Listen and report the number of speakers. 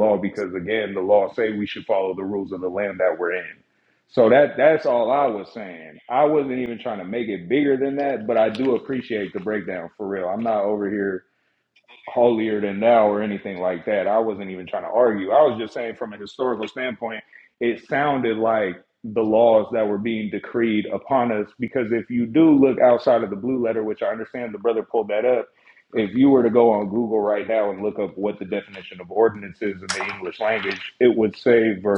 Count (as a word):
one